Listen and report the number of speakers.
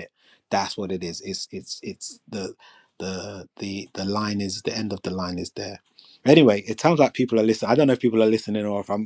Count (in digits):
1